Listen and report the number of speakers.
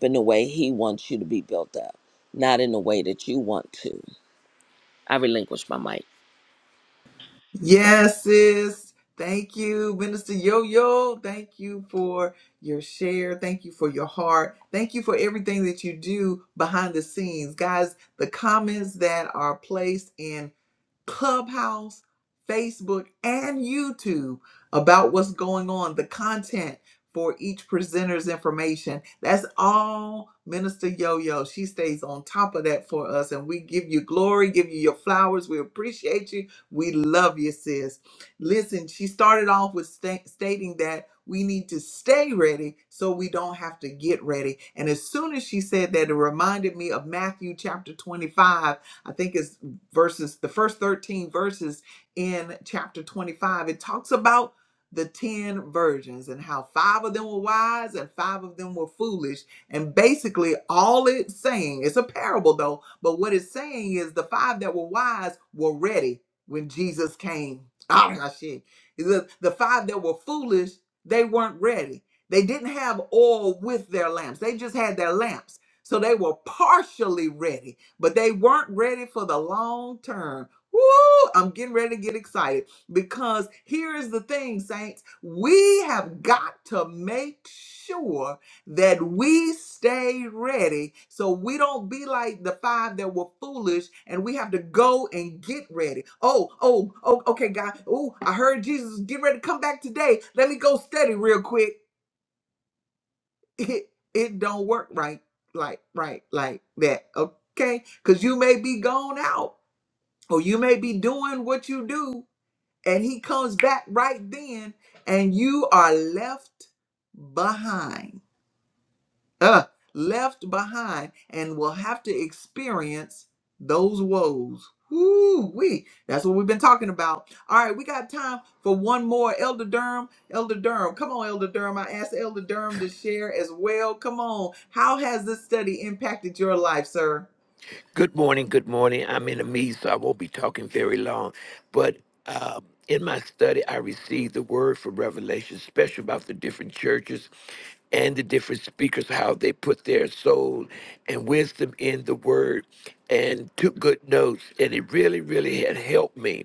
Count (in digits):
3